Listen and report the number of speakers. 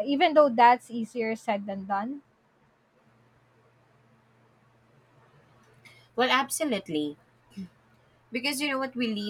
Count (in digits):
2